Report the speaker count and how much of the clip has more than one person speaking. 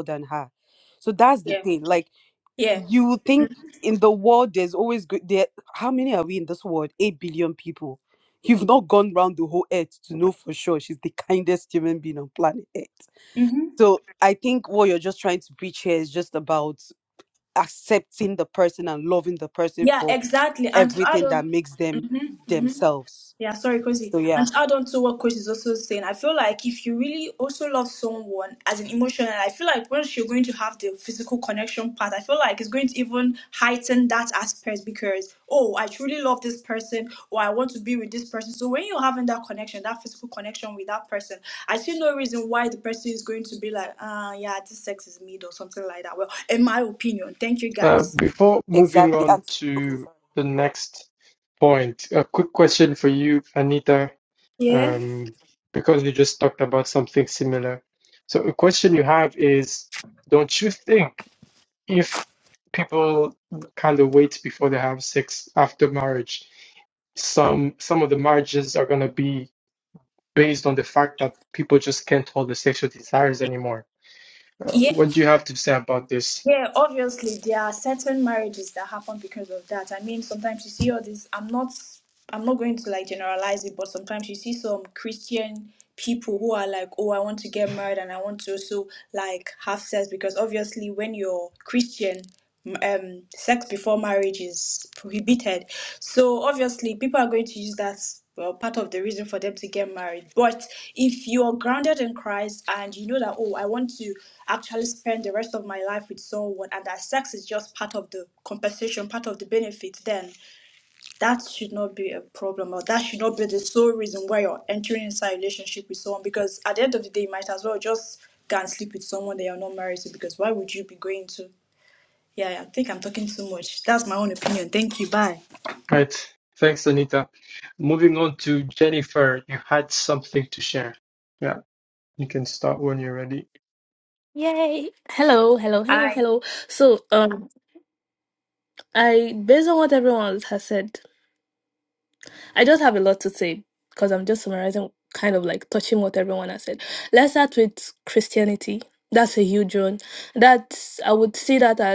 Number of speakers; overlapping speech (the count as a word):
four, about 3%